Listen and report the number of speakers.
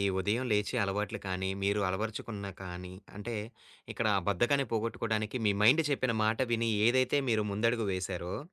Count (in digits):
1